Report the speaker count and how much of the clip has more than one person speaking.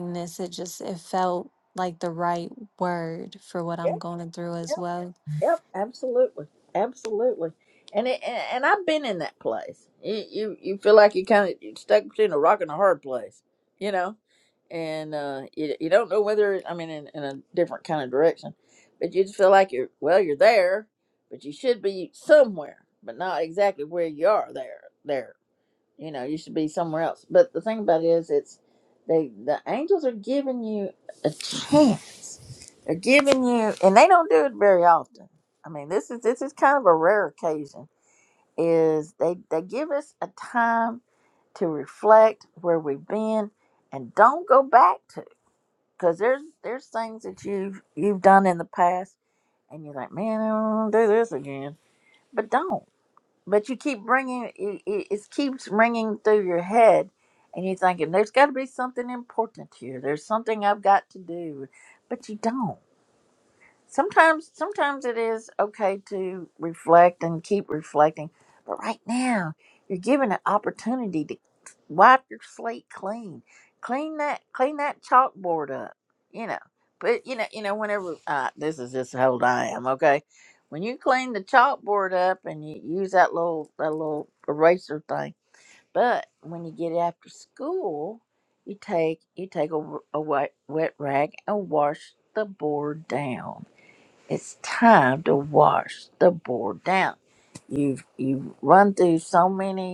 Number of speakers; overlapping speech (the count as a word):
two, under 1%